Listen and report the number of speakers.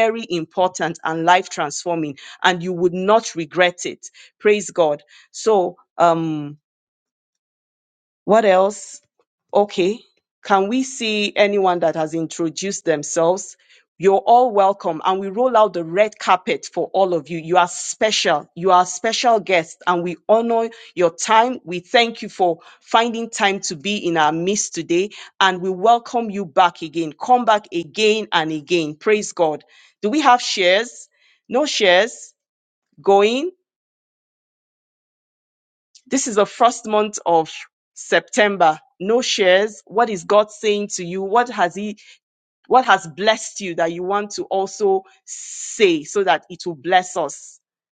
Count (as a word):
one